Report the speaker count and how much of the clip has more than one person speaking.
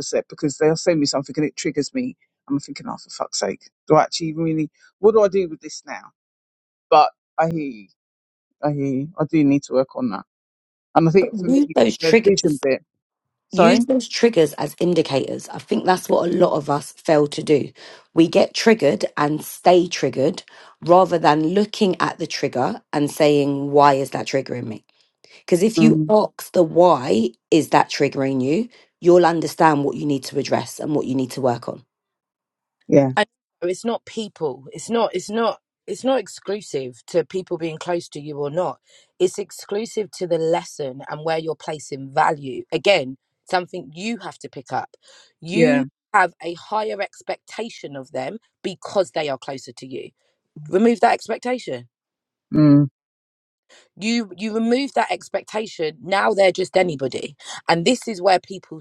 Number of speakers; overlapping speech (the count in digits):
3, about 3%